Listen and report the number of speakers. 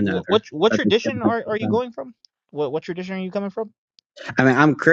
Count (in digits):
2